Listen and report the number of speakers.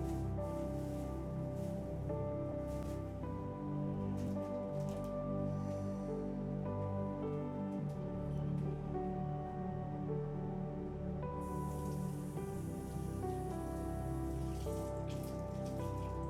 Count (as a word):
zero